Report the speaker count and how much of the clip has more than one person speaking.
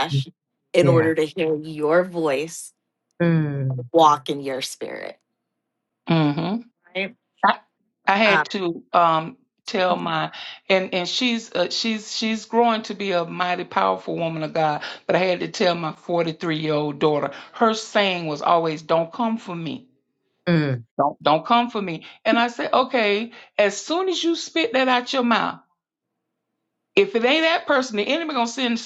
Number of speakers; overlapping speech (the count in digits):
3, about 2%